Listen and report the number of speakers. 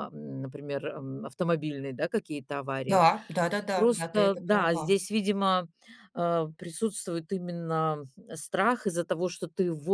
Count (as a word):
two